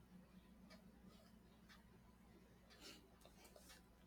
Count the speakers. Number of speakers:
zero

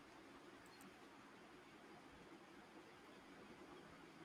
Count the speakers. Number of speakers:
zero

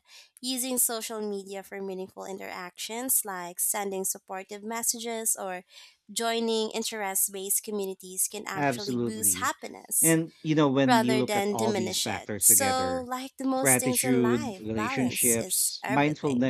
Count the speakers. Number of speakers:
two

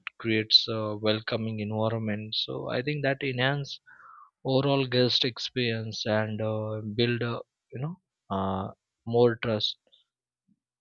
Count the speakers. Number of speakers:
one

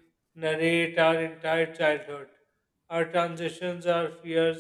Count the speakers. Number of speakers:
one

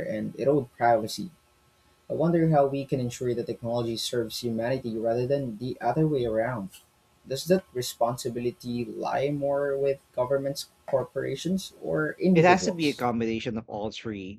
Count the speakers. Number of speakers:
two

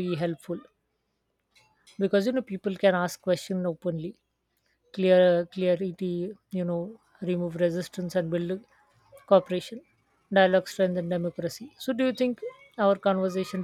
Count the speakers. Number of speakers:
one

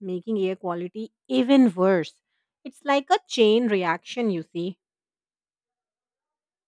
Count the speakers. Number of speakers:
one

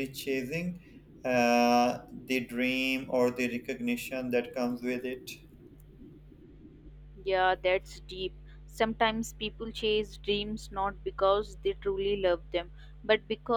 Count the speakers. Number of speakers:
two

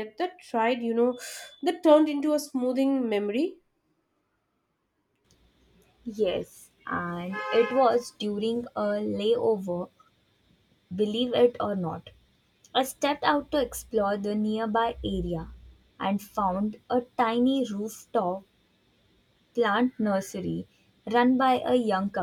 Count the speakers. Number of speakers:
two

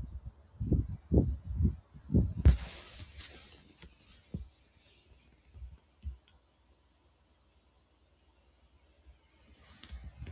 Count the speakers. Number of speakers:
zero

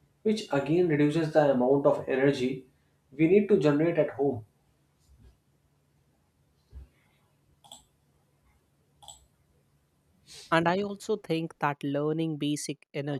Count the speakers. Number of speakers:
two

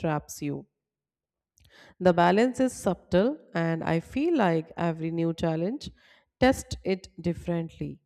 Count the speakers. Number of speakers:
one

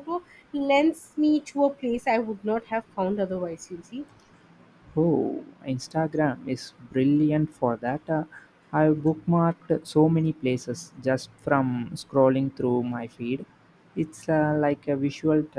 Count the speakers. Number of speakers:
two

